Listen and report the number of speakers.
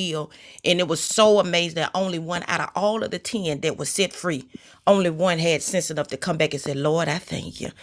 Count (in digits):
1